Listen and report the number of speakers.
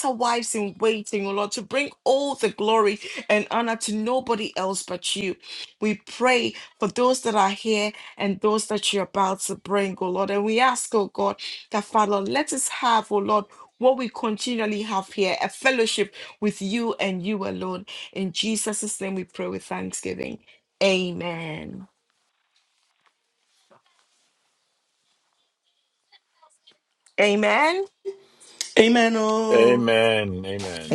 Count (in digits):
3